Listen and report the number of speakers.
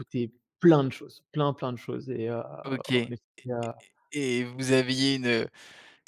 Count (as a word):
two